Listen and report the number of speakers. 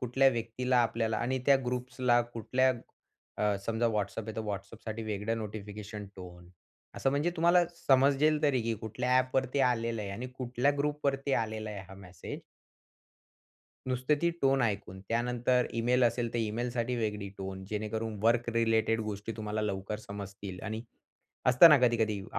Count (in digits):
1